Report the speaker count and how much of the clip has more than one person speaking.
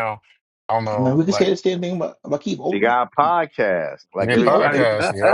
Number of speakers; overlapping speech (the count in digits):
3, about 30%